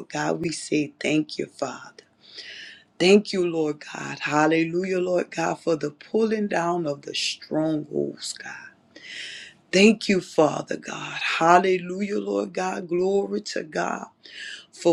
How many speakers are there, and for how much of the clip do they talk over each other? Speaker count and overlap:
1, no overlap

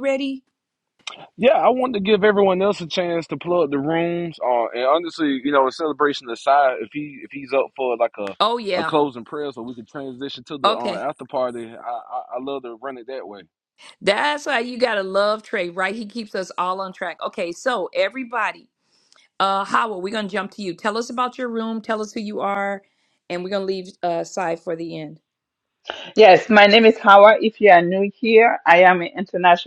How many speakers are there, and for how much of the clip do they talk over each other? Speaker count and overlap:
3, about 2%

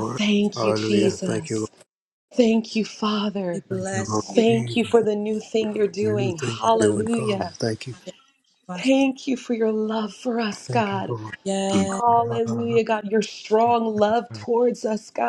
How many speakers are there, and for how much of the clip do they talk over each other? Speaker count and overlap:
3, about 29%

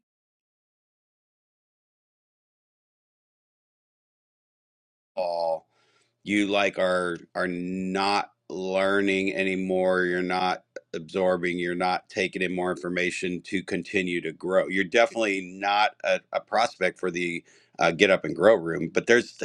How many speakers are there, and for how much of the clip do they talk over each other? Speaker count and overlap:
1, no overlap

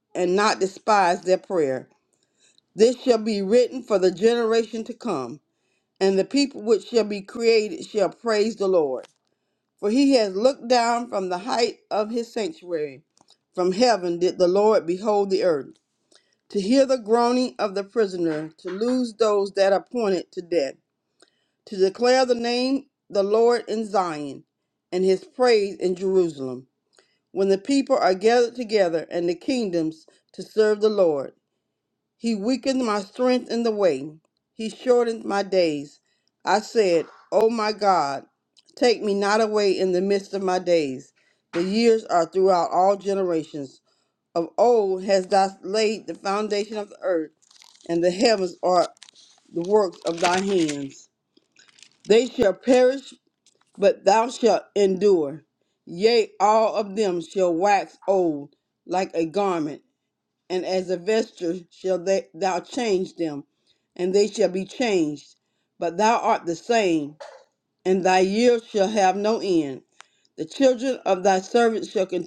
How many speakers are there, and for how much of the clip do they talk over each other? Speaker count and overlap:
1, no overlap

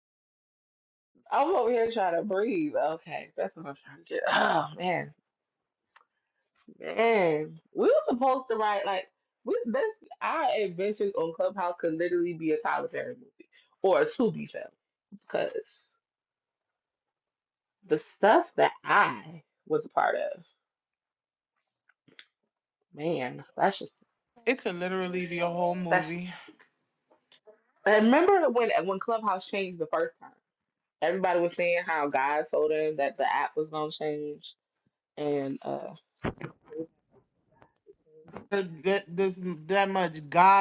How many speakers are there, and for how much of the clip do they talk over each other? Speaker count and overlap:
2, under 1%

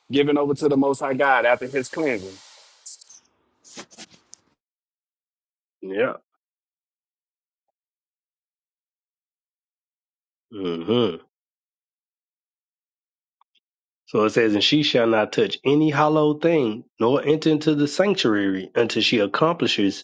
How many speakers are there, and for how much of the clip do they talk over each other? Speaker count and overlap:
2, no overlap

